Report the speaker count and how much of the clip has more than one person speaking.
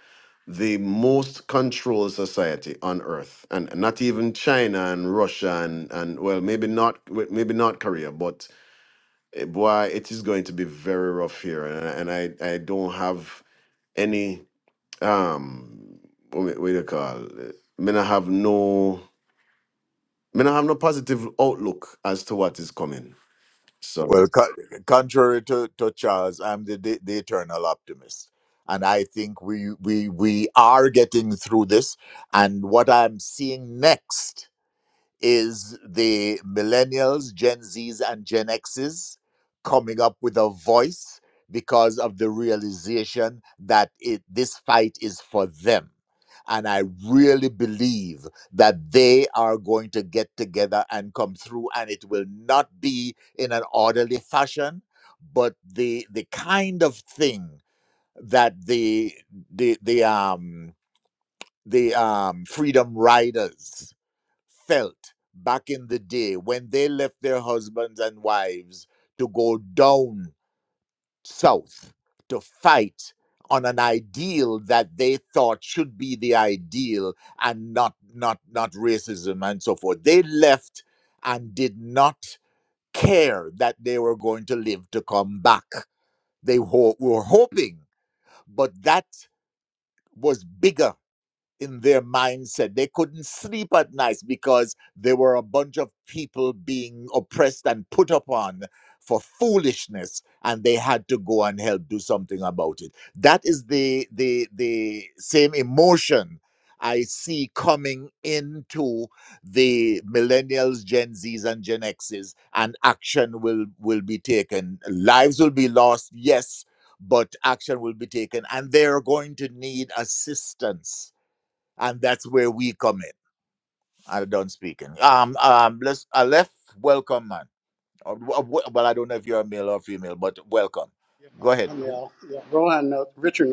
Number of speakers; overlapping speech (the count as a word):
three, under 1%